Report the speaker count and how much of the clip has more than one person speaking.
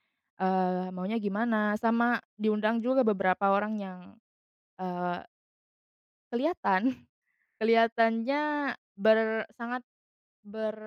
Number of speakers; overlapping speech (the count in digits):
1, no overlap